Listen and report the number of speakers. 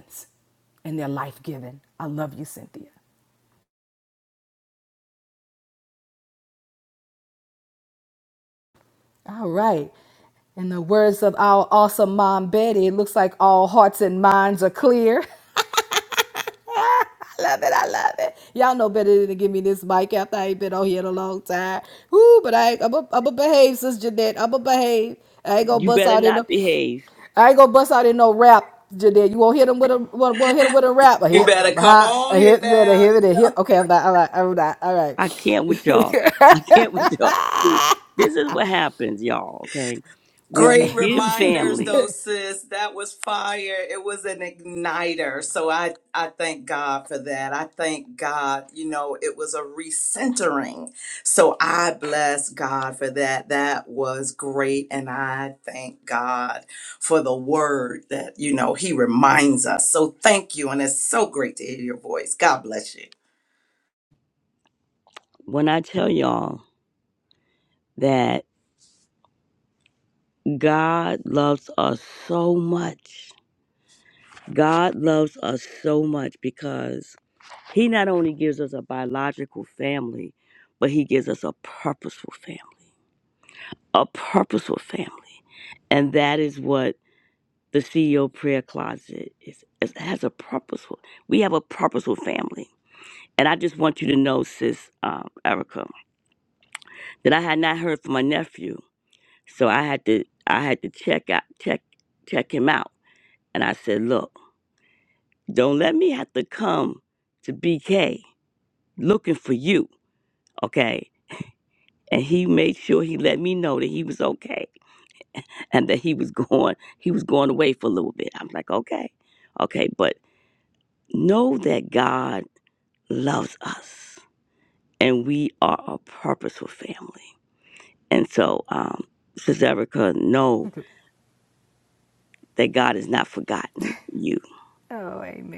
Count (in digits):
3